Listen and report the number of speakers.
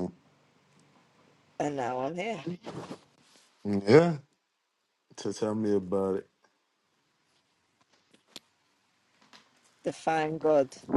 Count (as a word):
two